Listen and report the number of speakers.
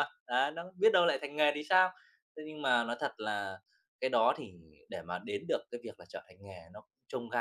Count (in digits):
1